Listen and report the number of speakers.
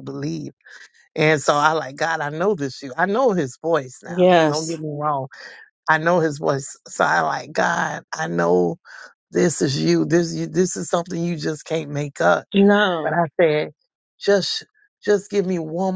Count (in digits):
2